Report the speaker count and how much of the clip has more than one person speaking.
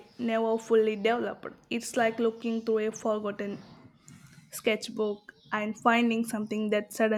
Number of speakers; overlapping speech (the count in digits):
1, no overlap